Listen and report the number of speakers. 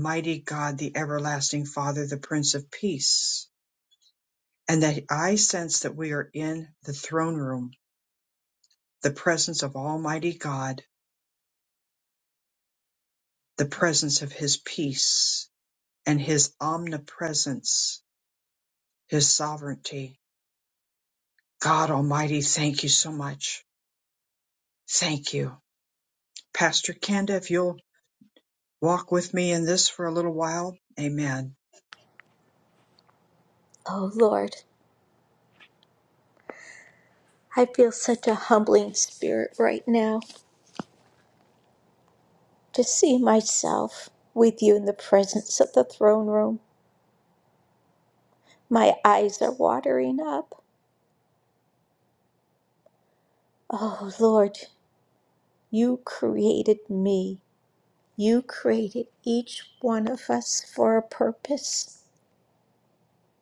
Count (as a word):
two